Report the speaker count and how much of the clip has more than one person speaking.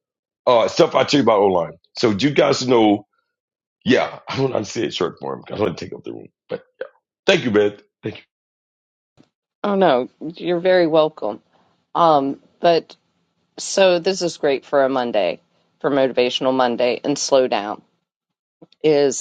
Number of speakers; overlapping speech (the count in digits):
2, no overlap